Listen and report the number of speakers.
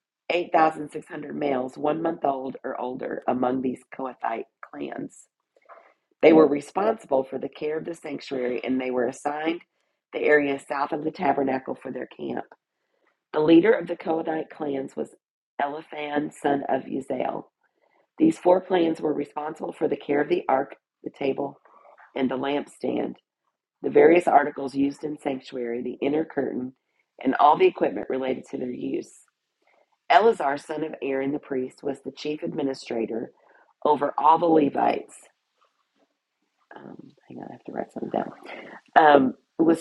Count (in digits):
1